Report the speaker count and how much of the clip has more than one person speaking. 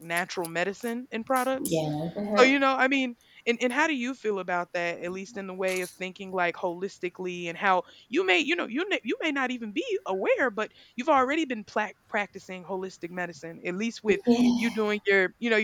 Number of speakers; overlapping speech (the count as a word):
two, about 3%